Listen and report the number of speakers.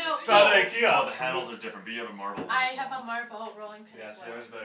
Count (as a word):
three